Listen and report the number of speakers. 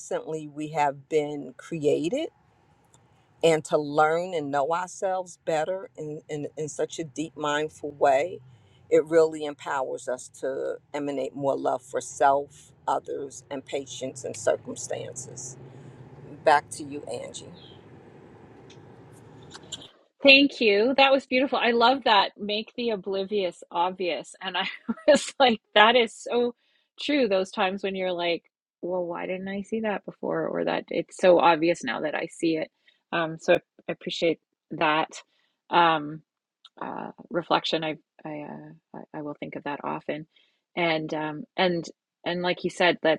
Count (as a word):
two